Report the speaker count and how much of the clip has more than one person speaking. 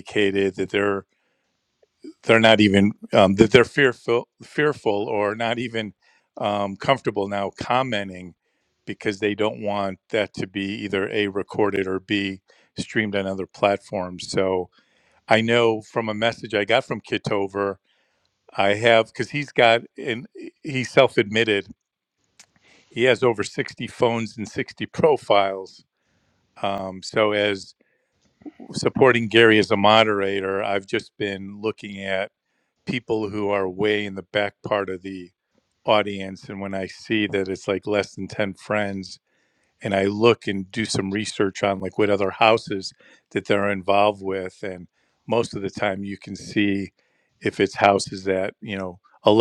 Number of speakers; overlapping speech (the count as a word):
one, no overlap